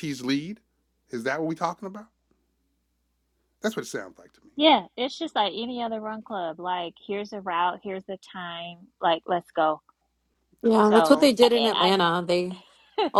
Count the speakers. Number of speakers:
3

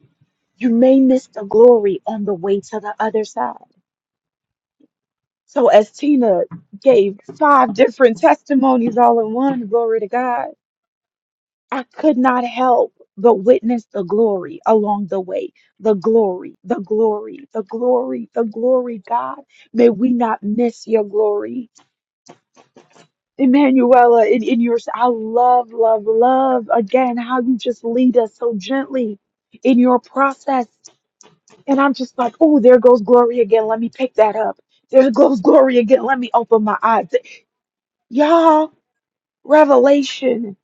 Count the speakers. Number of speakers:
1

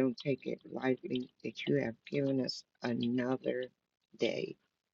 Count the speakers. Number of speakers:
1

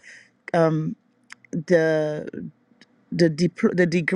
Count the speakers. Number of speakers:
1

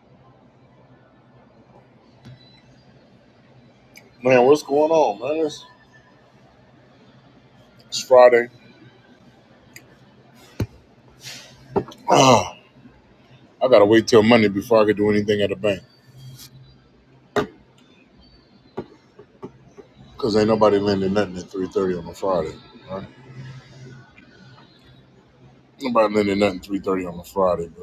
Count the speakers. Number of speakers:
1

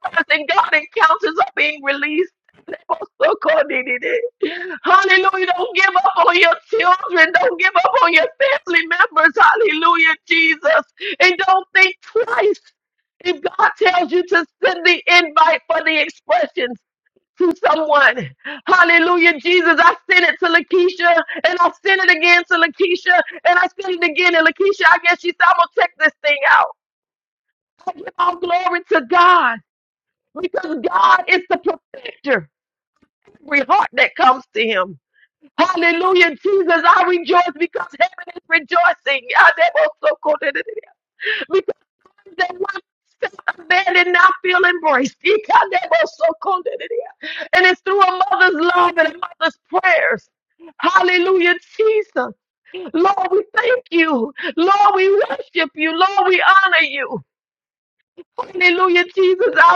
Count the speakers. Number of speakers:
1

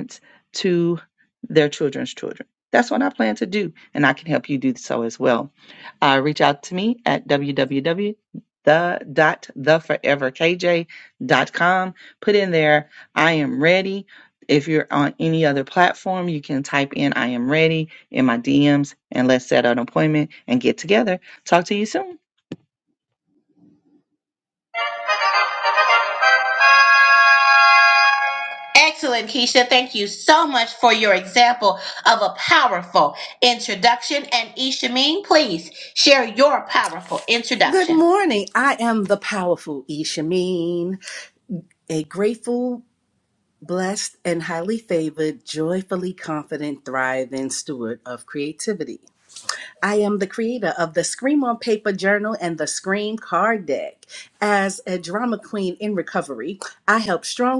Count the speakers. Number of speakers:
3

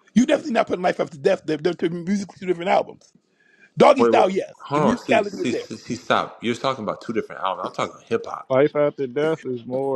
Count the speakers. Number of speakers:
3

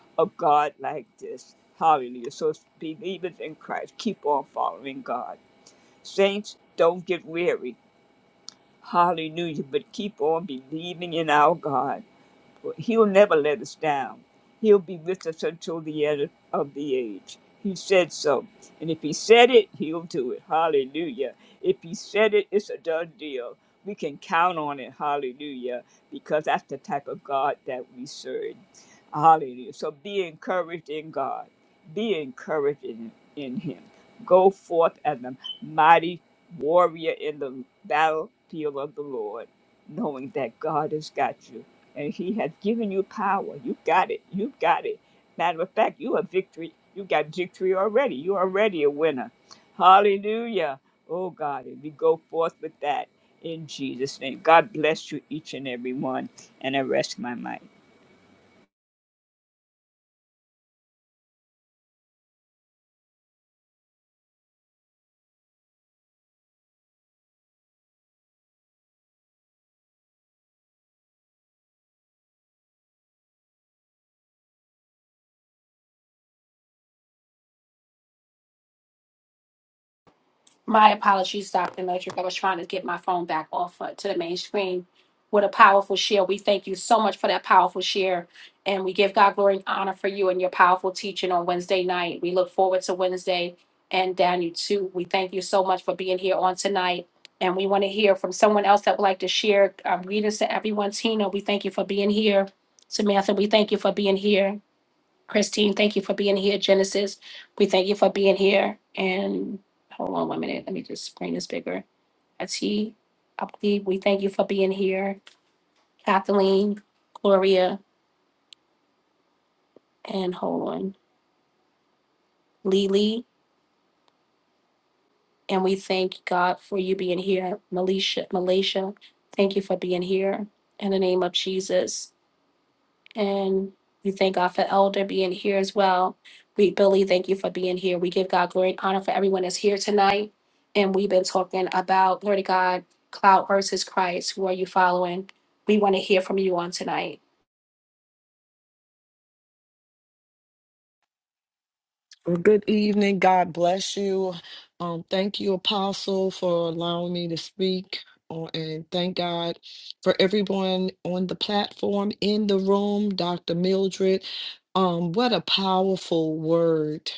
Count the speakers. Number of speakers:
3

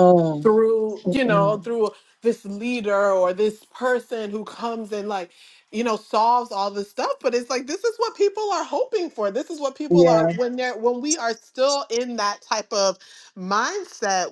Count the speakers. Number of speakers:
2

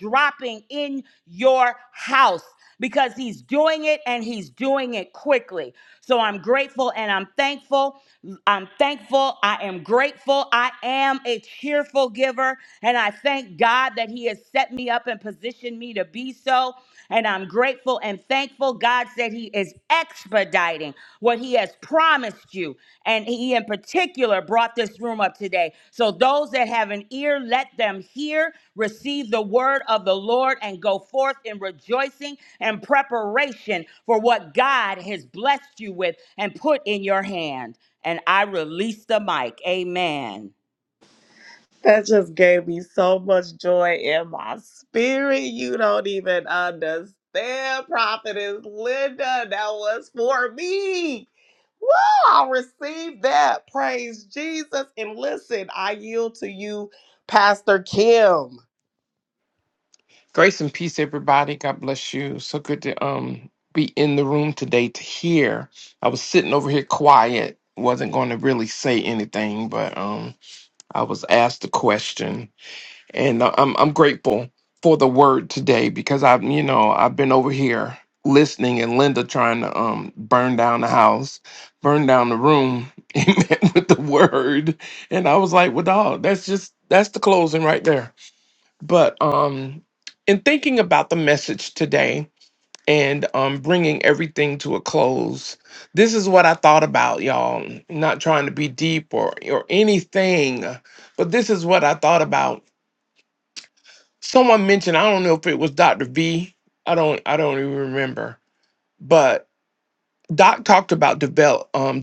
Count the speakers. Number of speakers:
3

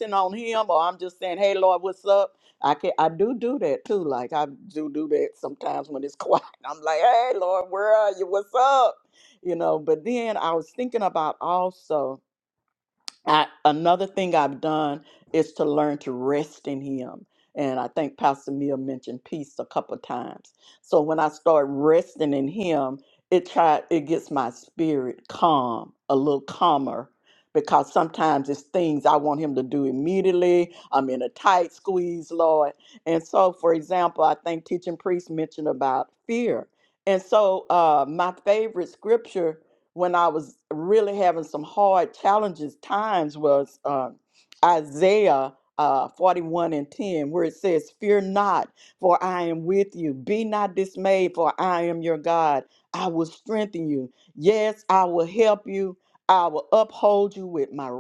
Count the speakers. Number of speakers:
1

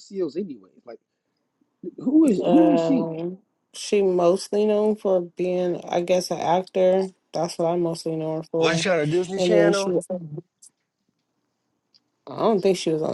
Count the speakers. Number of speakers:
3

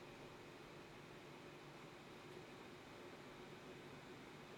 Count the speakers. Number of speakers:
0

